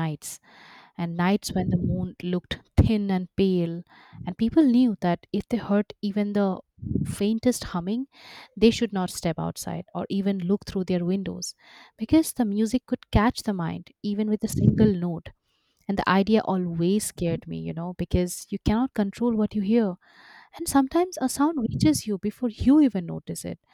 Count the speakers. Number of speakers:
1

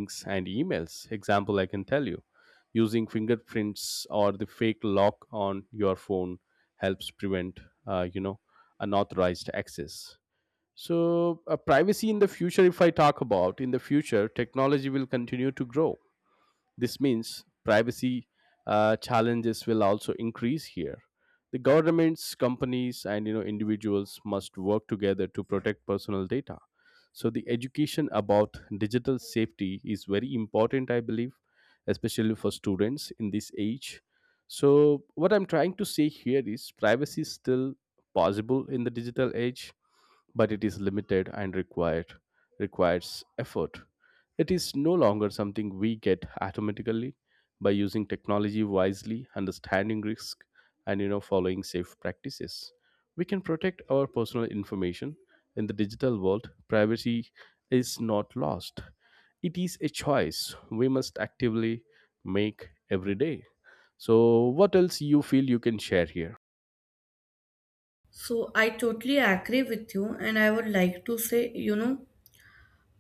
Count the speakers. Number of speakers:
2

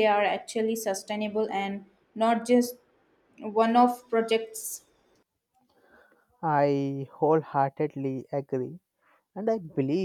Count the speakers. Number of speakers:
2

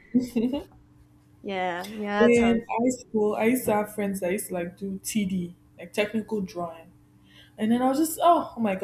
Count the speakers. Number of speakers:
2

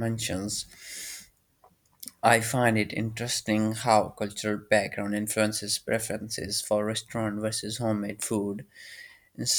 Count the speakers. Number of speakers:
1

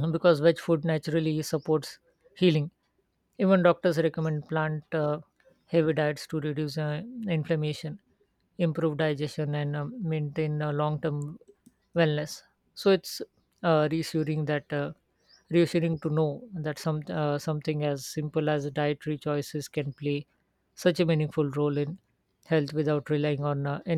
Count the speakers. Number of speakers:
1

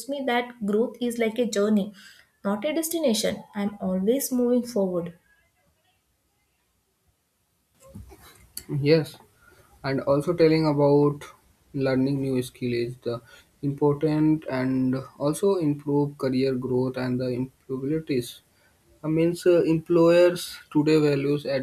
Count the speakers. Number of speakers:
2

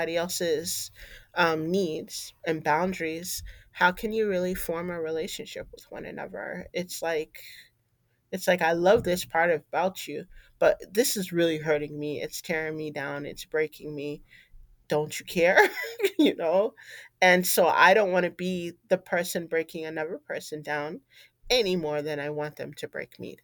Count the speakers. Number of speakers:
1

